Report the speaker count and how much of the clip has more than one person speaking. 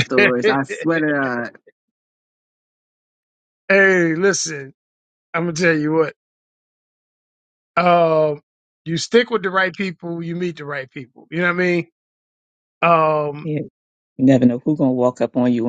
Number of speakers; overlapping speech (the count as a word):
three, no overlap